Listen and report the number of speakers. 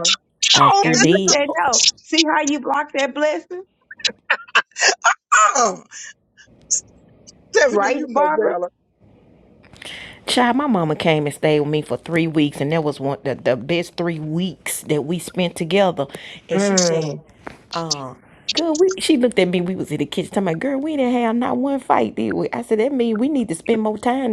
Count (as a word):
three